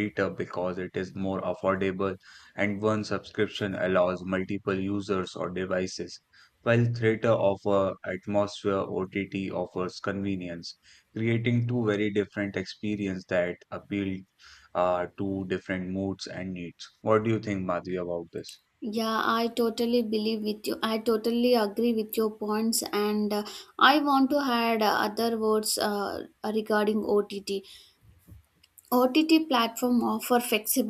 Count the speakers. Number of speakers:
2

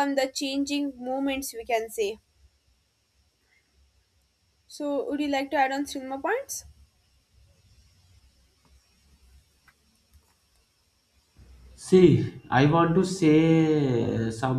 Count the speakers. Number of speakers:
2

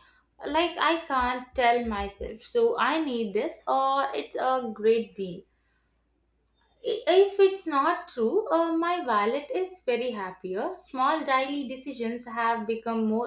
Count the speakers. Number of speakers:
1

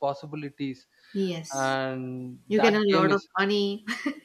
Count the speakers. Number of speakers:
2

